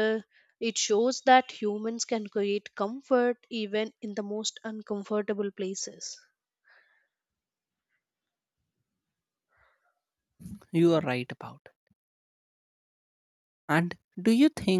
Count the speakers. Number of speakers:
2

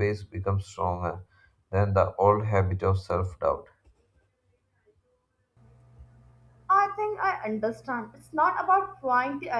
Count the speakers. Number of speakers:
2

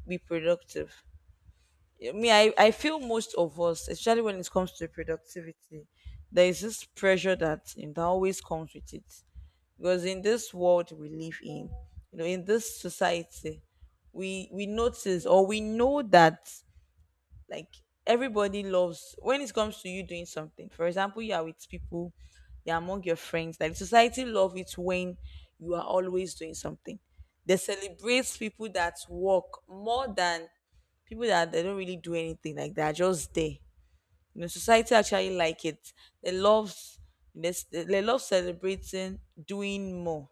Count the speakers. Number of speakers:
1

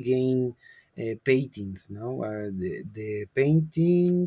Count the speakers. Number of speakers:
1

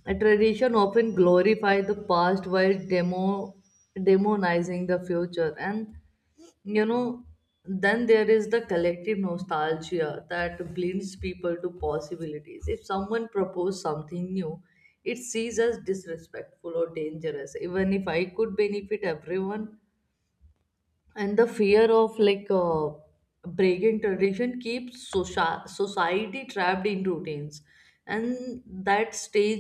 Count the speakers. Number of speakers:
1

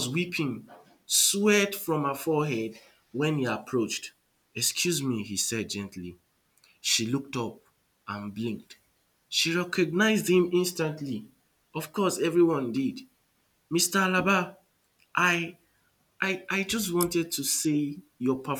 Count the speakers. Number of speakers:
1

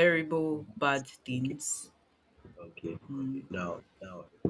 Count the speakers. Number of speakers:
2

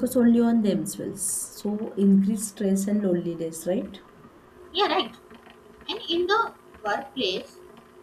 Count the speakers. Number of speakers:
2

